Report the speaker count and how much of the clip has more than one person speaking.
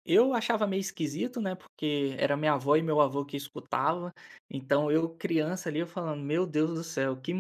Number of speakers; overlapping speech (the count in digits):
1, no overlap